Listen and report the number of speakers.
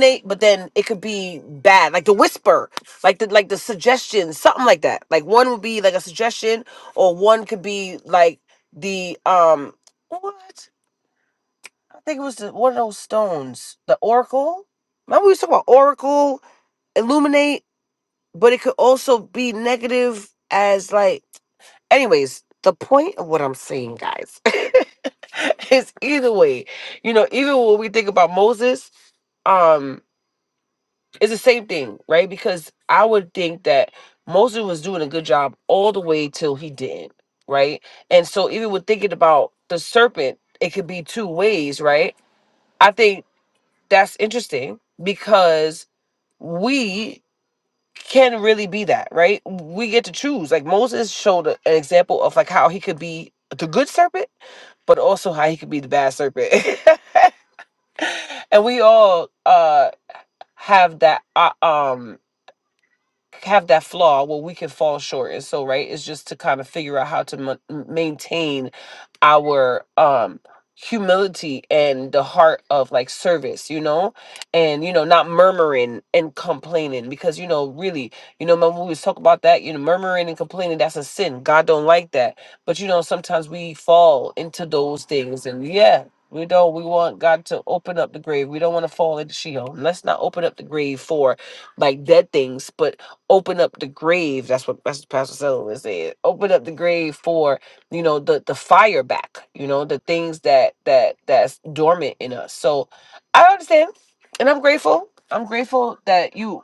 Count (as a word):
one